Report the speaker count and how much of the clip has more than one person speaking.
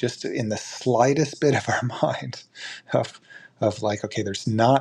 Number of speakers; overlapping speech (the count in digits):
1, no overlap